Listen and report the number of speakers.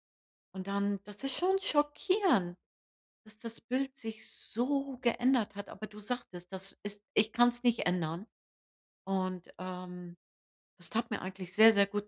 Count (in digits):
1